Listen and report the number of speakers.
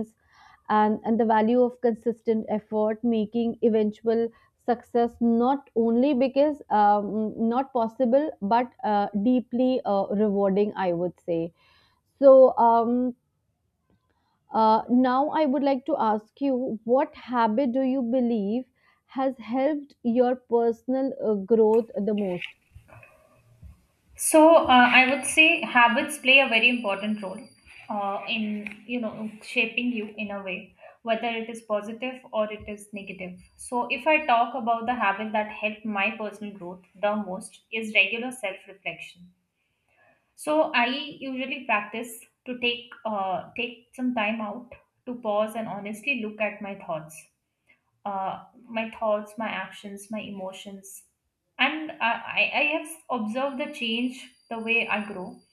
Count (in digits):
2